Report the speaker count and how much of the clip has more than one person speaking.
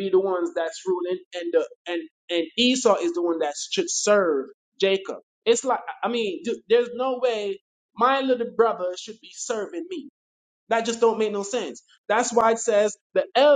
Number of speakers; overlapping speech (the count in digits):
1, no overlap